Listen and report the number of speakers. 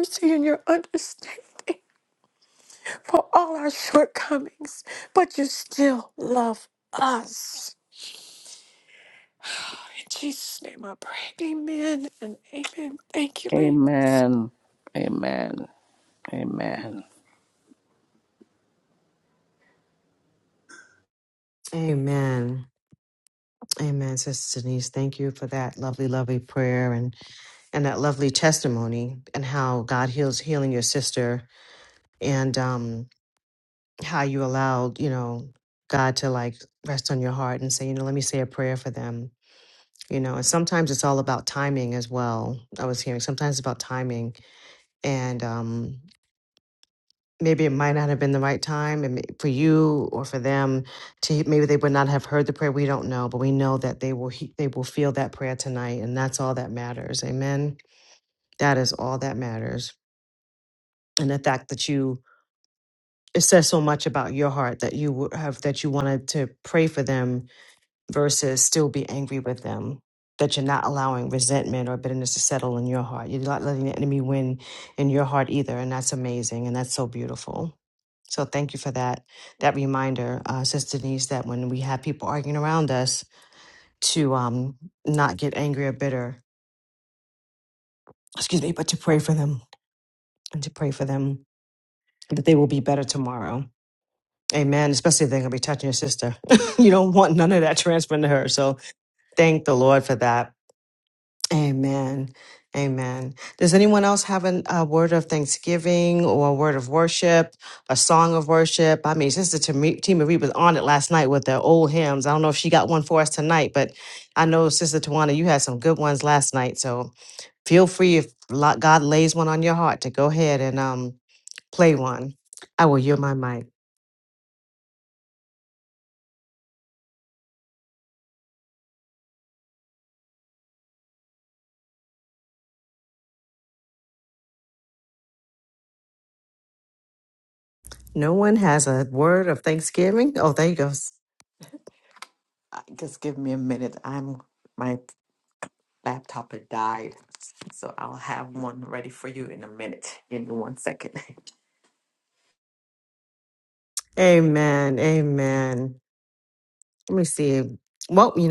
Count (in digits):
4